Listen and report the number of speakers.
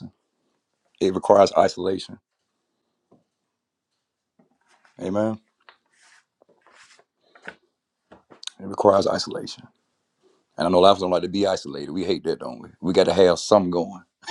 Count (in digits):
1